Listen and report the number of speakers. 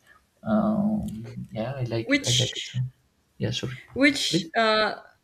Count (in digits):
2